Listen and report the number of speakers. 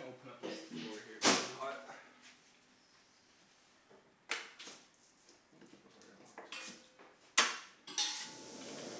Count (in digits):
1